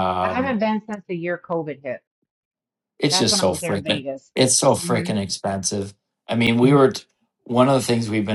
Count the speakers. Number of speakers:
2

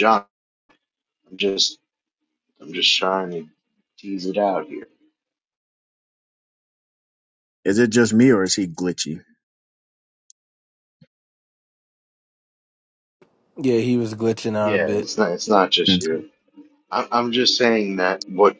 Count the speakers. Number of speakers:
3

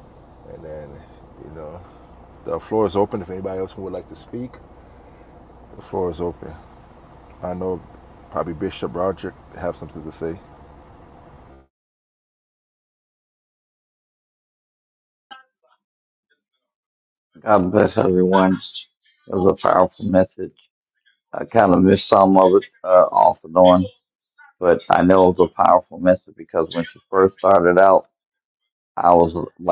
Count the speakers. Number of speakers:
2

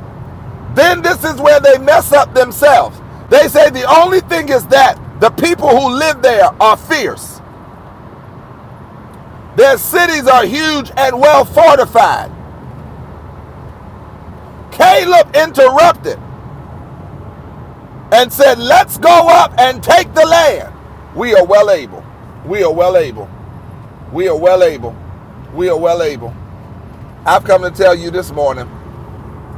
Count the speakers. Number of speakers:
1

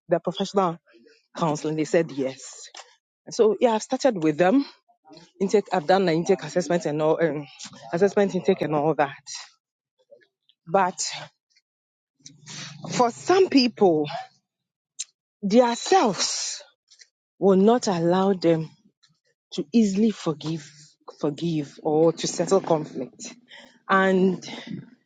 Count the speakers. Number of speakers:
1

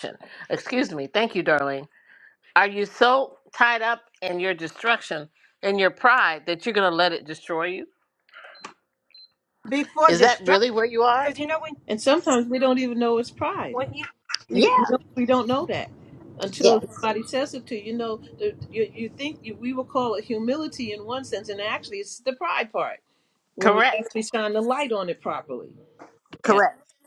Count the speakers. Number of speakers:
3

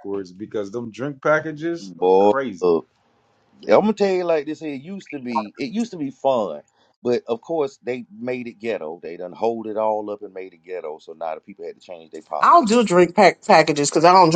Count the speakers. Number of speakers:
3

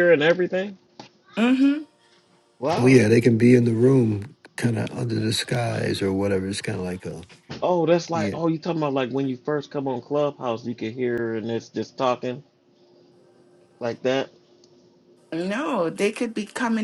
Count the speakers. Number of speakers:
3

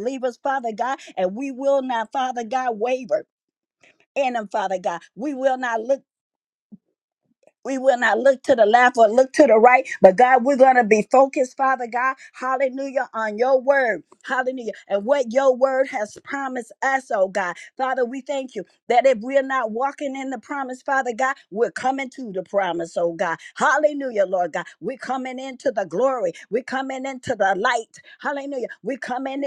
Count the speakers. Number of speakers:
1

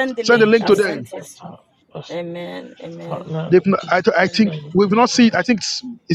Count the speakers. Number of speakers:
3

